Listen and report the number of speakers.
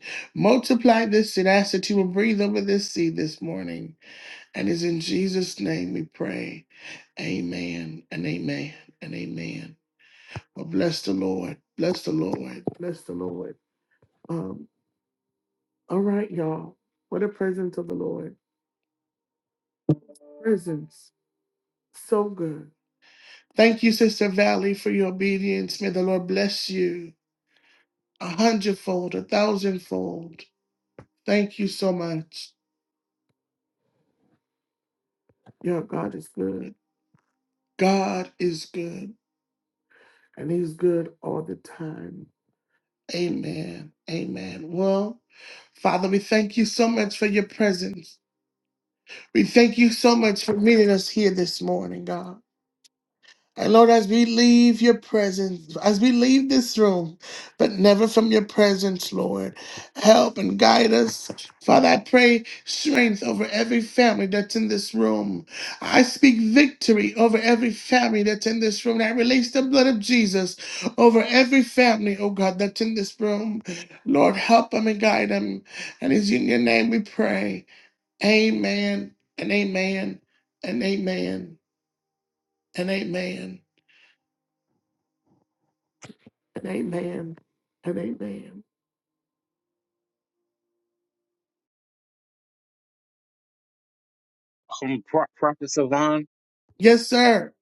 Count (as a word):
two